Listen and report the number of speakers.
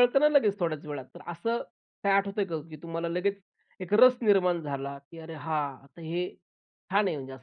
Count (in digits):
1